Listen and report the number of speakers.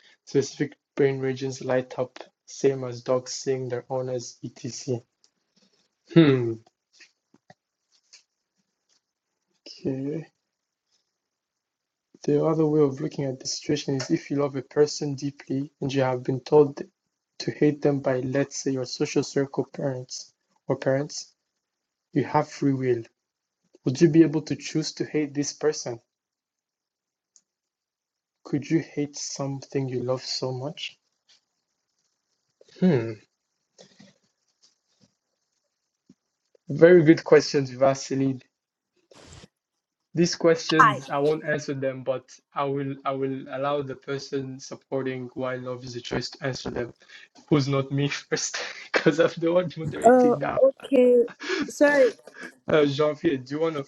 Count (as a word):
two